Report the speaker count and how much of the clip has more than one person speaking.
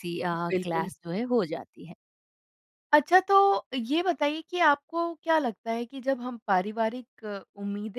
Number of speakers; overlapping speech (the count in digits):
2, about 5%